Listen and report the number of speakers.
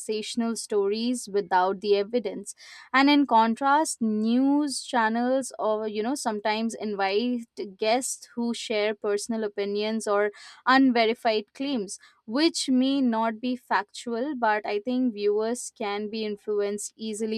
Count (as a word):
one